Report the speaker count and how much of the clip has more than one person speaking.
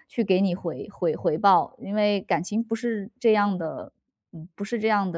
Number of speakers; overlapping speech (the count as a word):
one, no overlap